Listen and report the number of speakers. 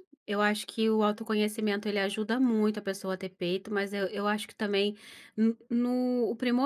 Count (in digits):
1